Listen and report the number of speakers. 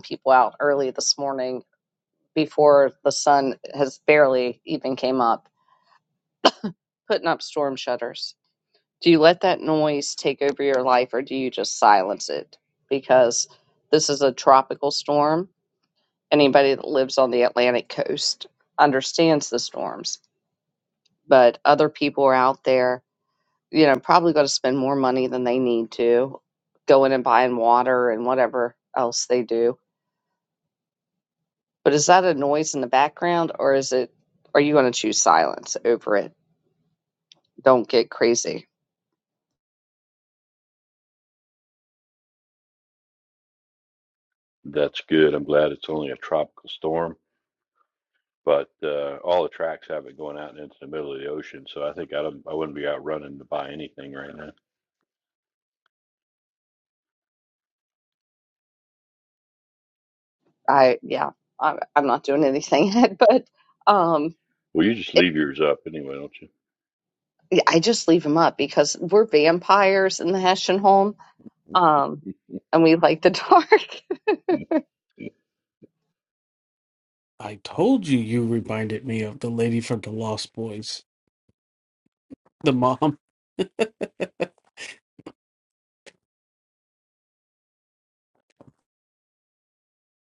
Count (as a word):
three